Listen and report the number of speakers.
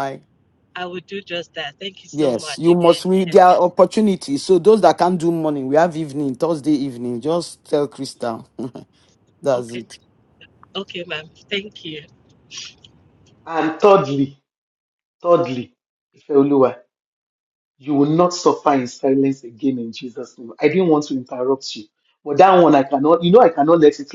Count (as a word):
three